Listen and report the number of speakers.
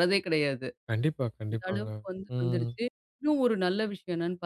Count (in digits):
2